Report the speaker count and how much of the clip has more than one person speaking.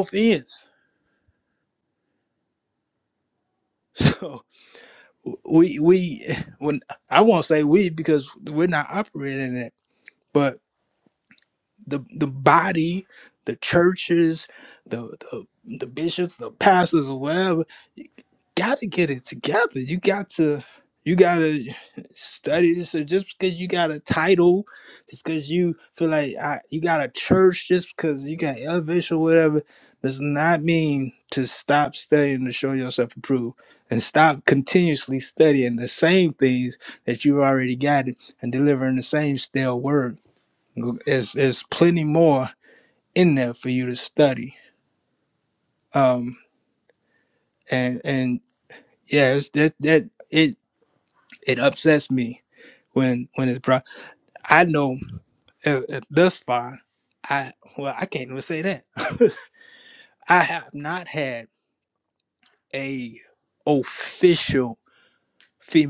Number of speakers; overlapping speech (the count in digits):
1, no overlap